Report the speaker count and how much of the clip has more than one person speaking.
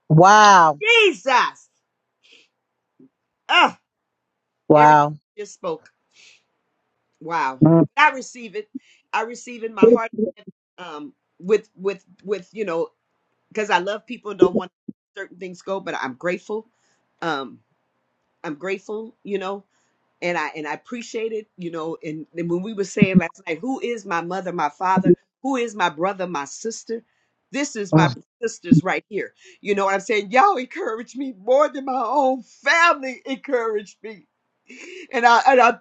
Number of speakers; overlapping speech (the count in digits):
2, about 1%